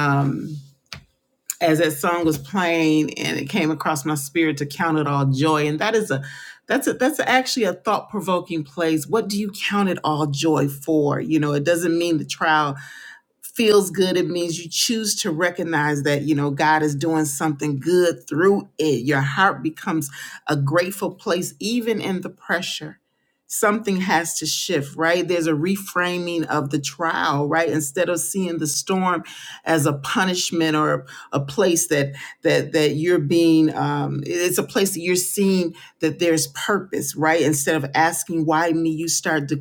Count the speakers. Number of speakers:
one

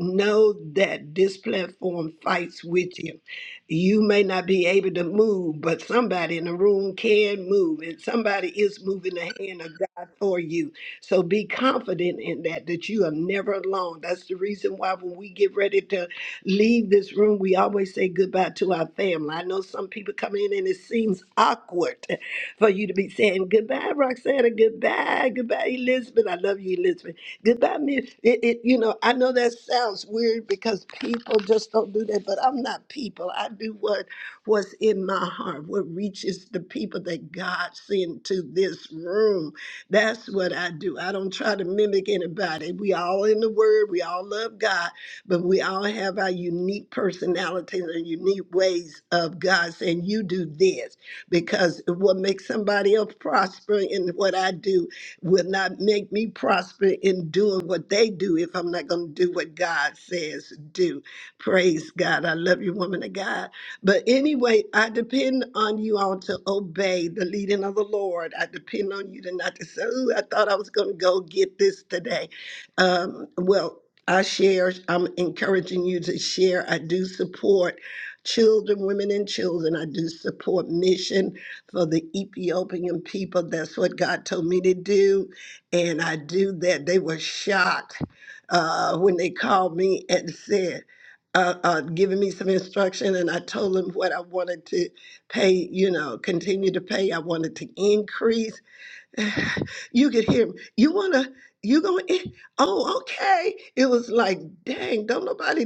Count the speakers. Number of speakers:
one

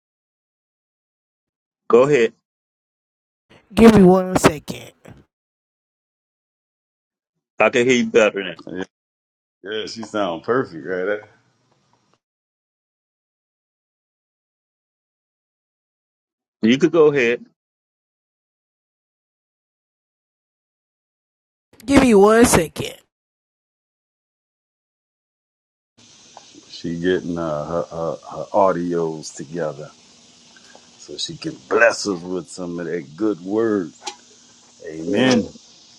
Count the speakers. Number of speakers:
three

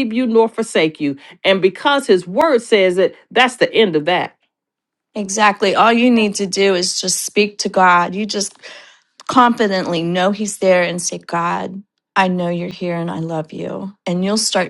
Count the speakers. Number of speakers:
two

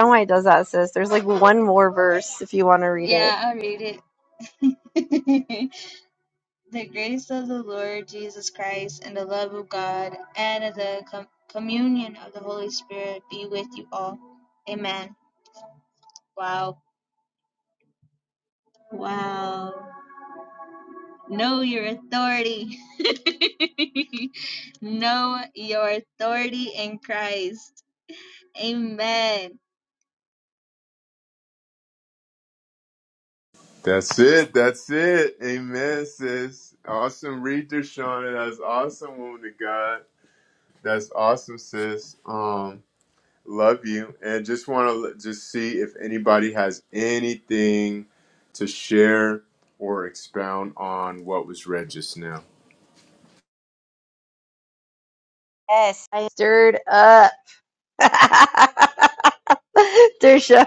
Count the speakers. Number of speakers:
three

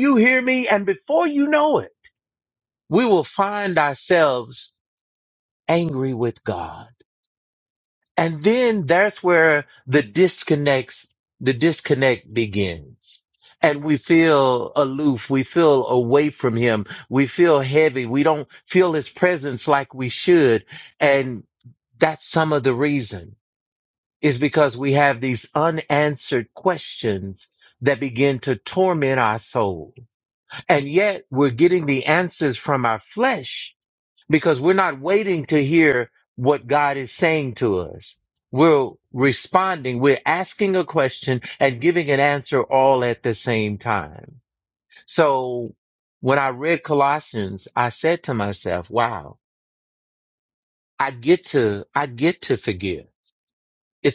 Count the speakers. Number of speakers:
one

